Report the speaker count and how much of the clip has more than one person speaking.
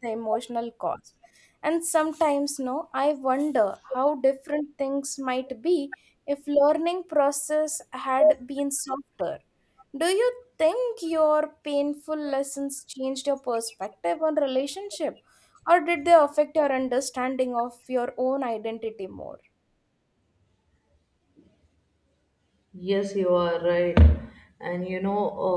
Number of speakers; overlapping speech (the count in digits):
2, no overlap